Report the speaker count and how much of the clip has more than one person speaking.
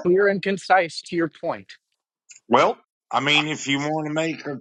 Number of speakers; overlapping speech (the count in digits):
2, about 1%